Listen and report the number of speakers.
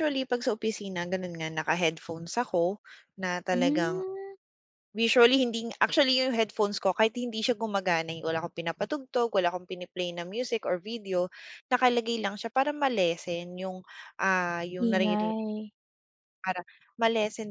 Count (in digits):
2